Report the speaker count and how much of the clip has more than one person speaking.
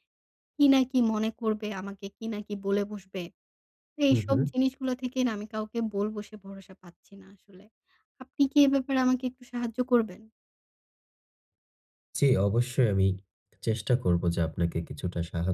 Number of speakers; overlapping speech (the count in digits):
2, about 2%